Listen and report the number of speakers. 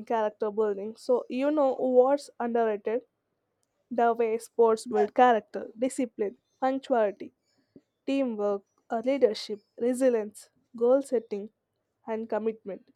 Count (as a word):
one